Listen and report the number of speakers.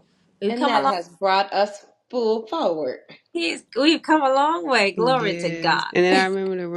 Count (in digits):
3